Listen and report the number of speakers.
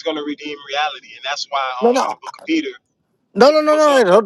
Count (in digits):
2